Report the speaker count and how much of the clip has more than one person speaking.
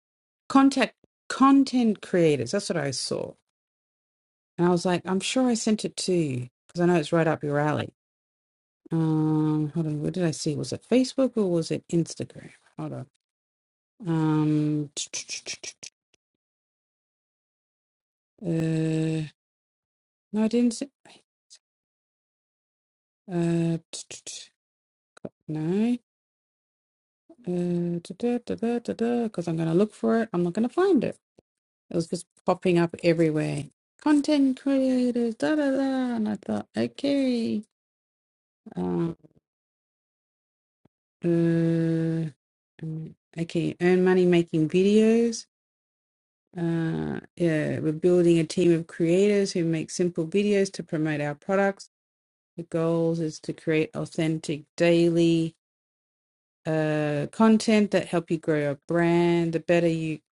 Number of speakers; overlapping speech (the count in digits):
1, no overlap